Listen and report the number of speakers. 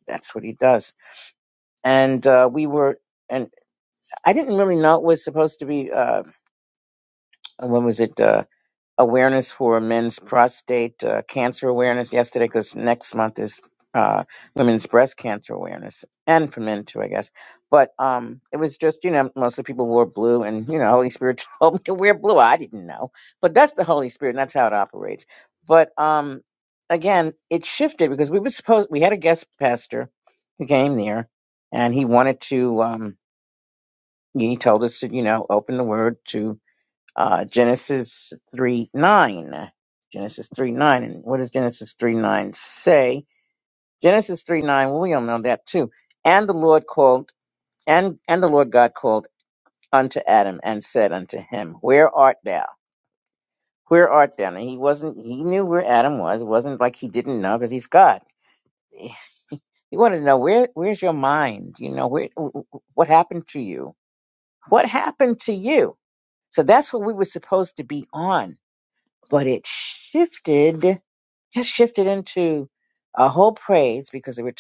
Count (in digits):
1